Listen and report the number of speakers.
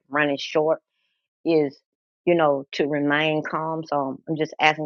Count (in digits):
1